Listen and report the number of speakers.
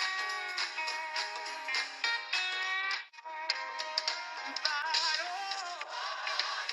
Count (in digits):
0